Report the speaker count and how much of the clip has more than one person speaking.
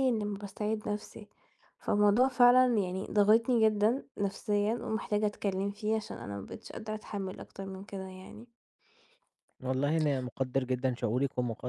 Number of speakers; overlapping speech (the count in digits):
2, no overlap